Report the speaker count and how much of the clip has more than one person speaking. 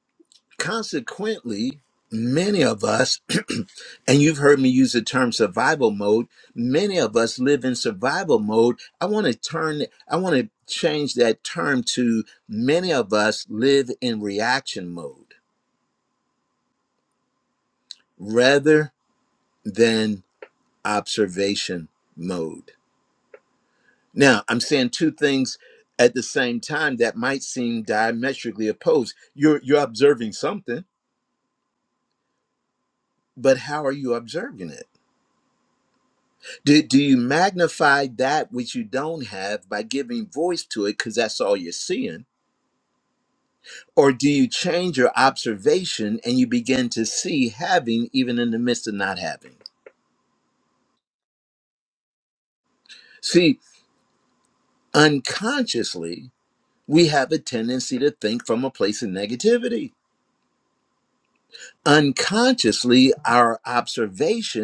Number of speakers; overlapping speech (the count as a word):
one, no overlap